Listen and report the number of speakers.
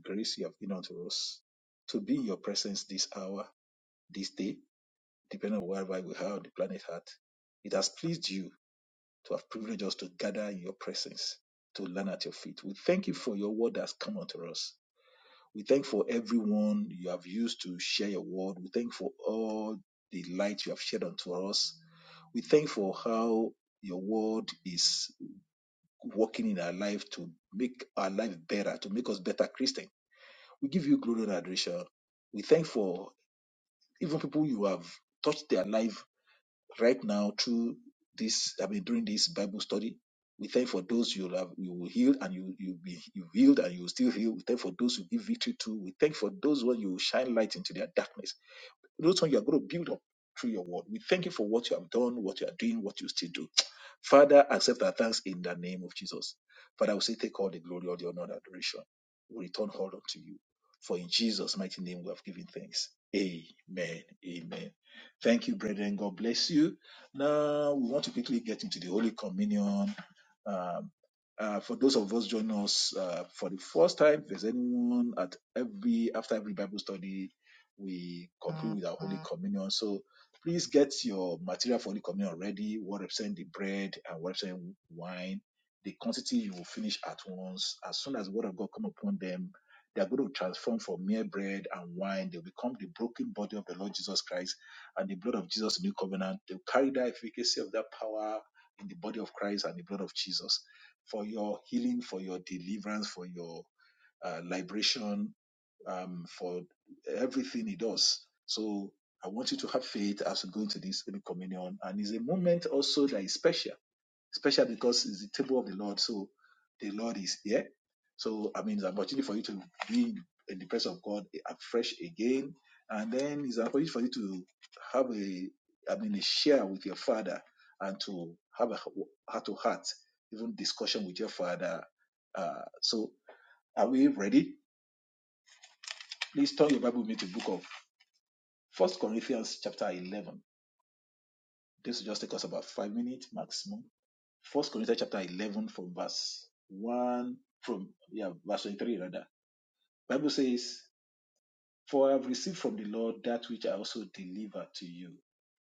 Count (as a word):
one